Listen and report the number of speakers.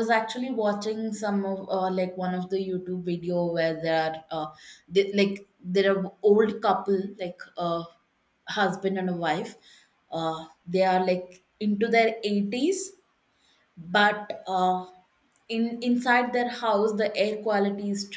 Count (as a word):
one